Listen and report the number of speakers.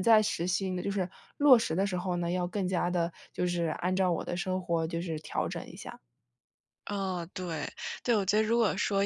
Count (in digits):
2